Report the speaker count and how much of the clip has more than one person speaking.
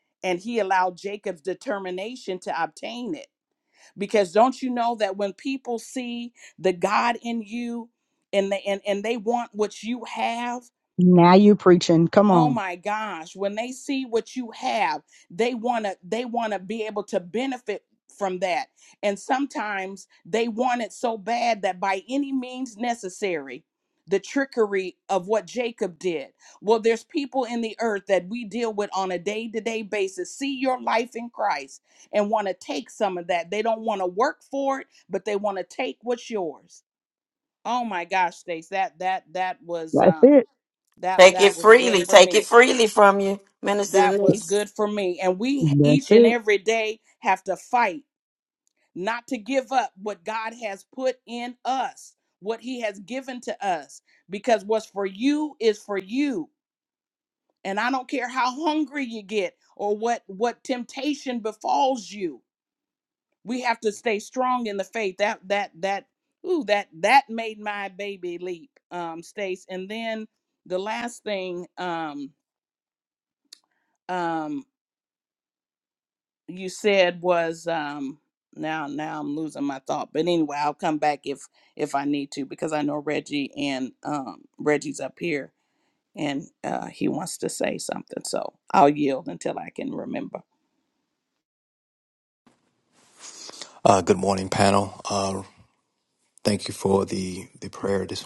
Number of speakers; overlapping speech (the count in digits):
4, about 3%